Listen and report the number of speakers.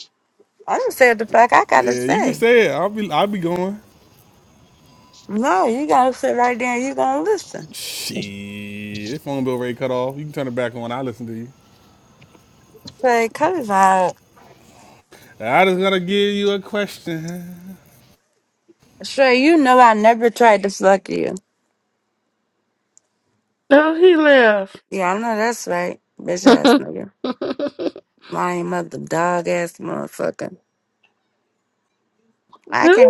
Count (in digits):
3